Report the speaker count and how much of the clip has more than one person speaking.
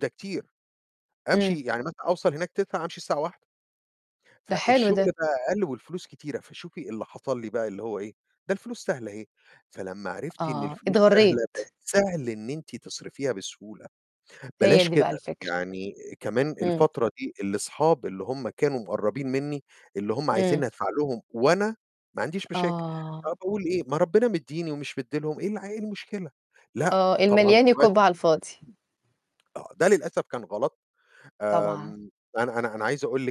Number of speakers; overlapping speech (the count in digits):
2, about 14%